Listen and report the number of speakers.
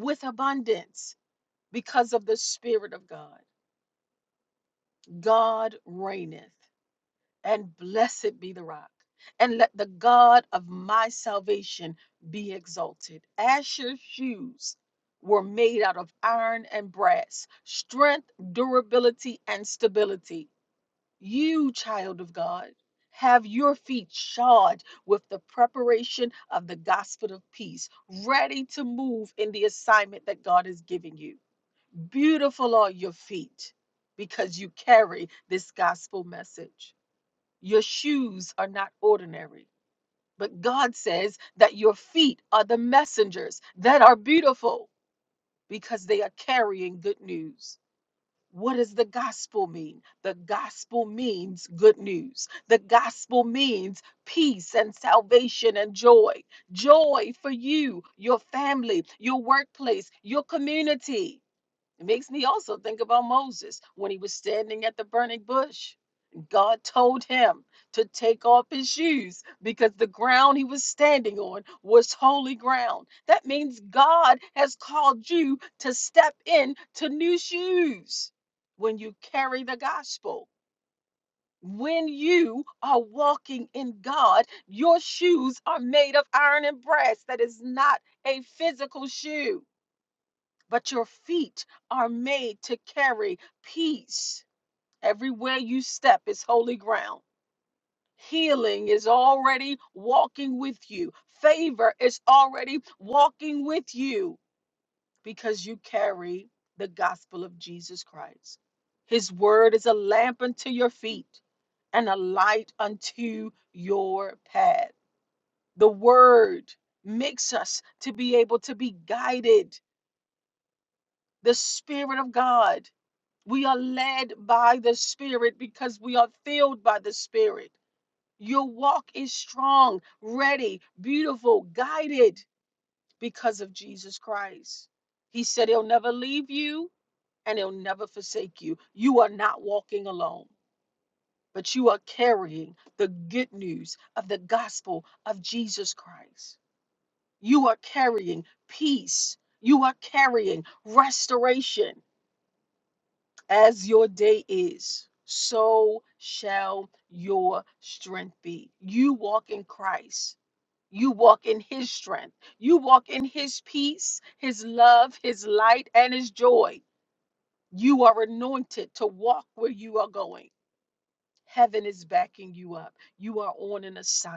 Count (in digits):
1